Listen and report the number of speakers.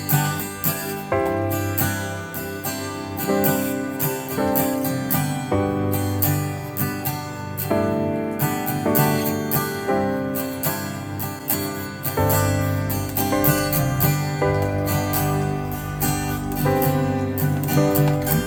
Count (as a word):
zero